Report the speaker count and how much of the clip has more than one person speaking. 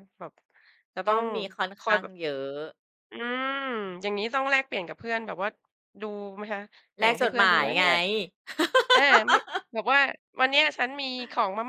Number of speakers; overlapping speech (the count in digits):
2, about 12%